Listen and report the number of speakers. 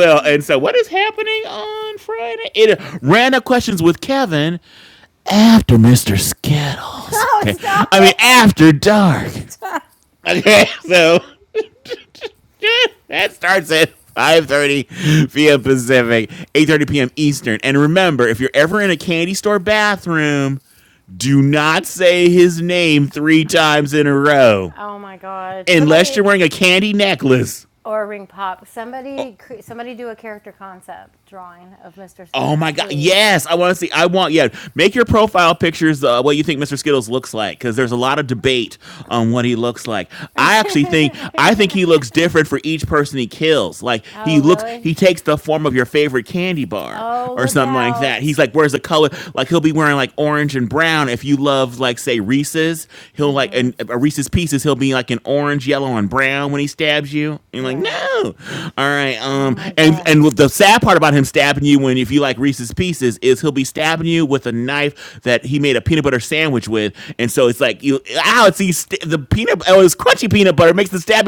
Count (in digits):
2